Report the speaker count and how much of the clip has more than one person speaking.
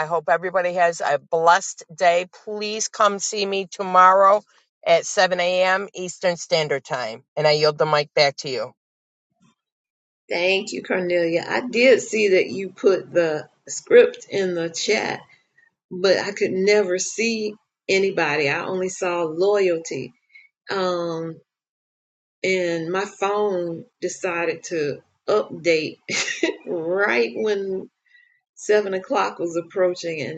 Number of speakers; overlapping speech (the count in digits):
2, no overlap